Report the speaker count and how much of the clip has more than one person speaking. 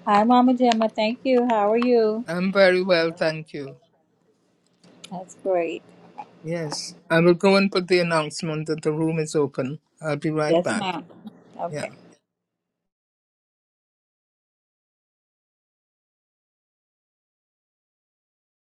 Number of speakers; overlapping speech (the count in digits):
2, about 3%